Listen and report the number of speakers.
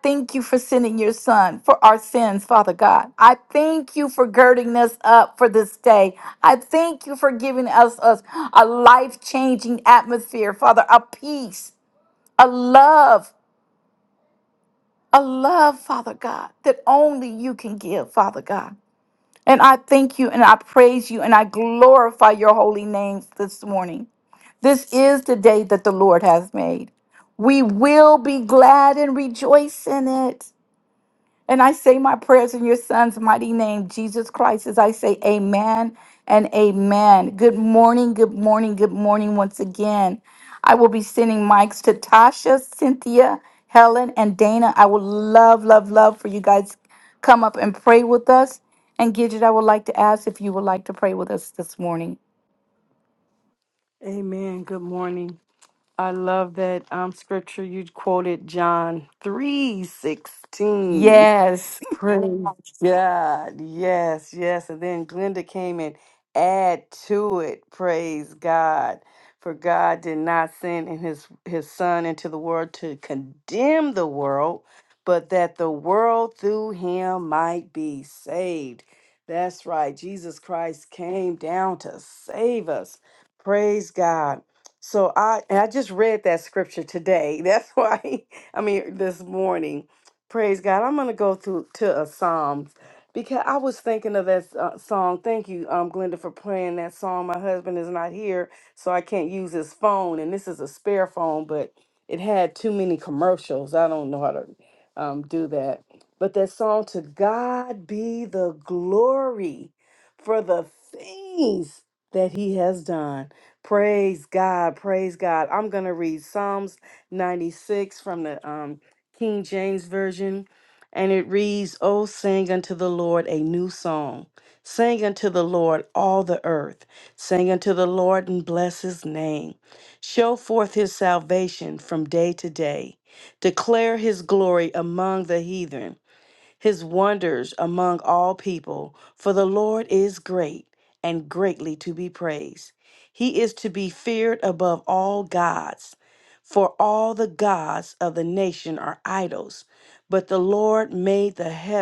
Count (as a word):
two